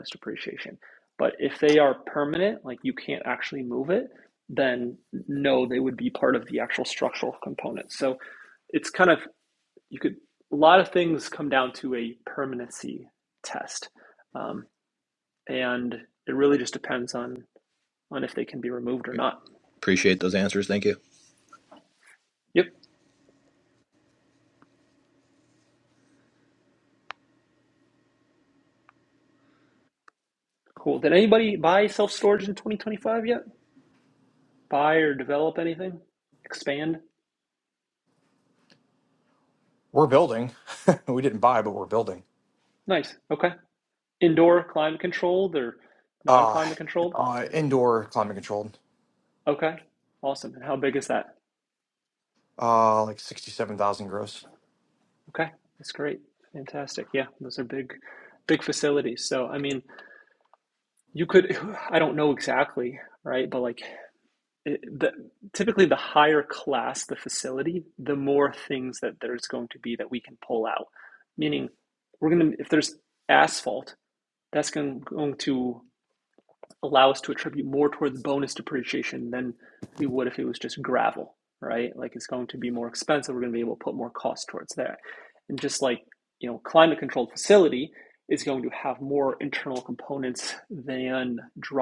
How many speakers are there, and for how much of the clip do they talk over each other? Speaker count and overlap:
3, under 1%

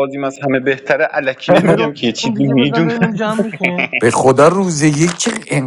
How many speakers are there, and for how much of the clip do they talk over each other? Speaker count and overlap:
3, about 25%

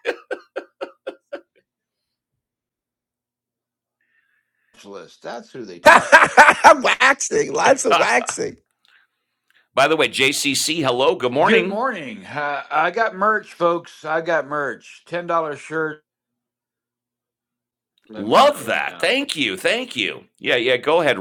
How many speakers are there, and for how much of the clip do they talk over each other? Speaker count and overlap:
3, about 6%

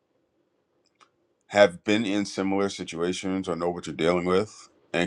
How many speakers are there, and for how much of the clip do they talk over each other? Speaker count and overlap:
1, no overlap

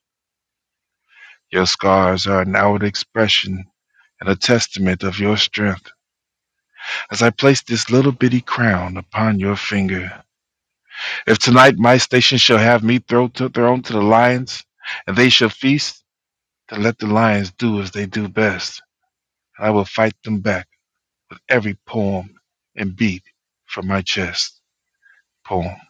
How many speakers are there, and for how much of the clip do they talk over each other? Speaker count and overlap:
1, no overlap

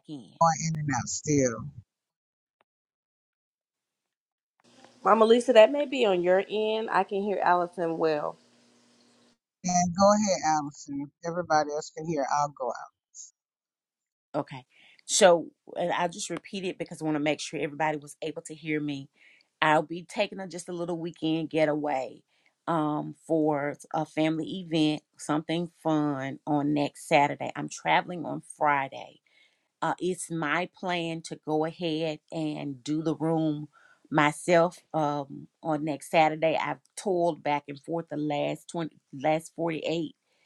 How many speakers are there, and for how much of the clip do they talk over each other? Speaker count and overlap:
3, no overlap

